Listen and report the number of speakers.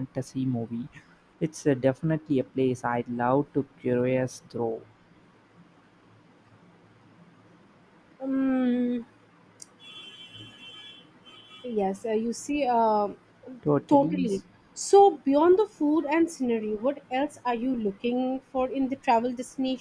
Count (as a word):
two